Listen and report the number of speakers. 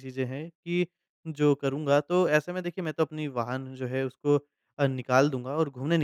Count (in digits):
1